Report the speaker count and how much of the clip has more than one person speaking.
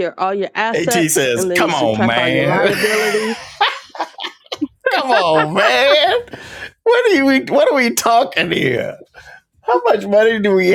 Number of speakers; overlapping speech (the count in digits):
2, about 19%